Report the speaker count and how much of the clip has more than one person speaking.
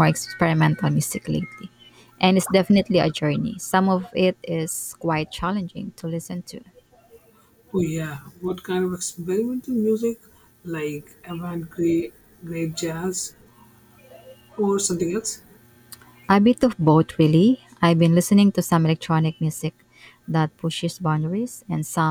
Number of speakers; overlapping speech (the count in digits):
2, no overlap